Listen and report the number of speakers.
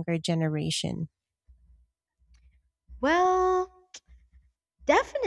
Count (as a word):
two